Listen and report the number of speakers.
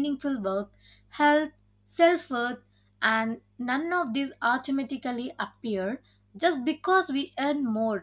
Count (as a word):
one